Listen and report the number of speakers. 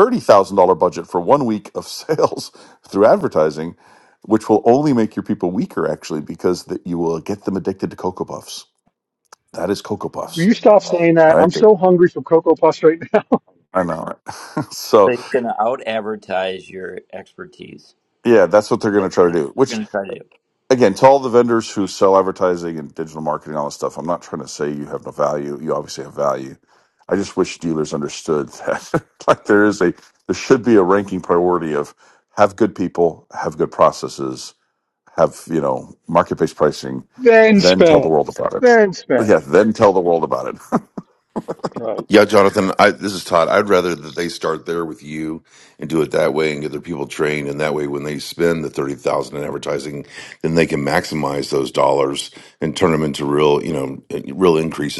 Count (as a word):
four